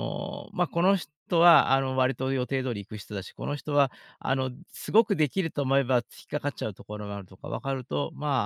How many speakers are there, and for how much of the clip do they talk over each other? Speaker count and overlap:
1, no overlap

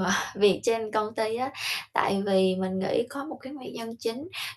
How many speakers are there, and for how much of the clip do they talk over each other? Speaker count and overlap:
1, no overlap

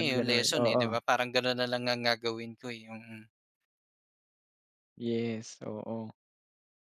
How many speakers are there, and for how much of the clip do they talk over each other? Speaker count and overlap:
2, about 14%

